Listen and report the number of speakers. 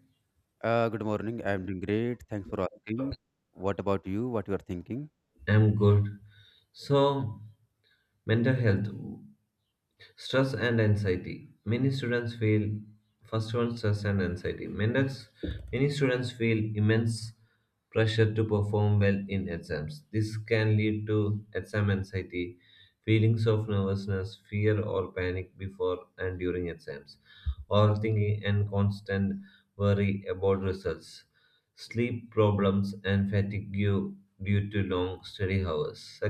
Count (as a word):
two